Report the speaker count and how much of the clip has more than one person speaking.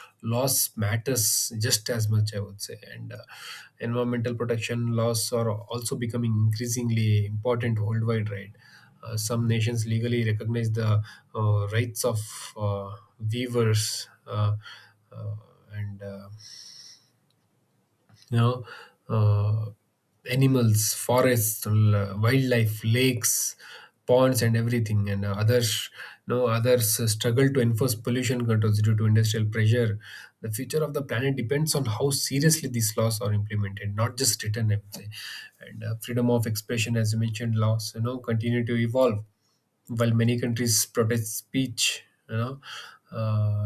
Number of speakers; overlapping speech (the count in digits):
1, no overlap